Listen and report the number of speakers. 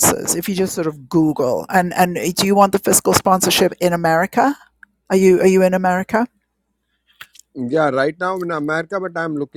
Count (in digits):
2